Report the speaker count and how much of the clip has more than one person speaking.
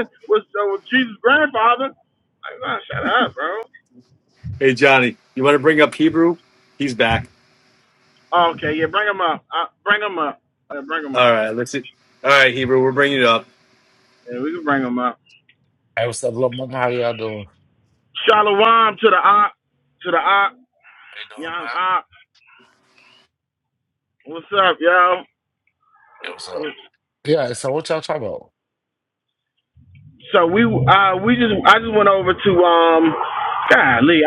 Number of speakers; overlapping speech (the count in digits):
3, about 2%